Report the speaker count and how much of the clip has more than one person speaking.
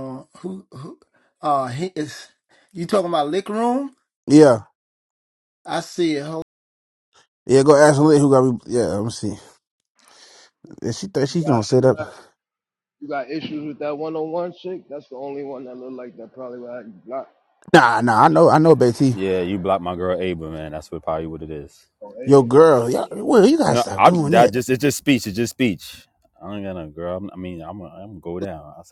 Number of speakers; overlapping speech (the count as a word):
four, about 8%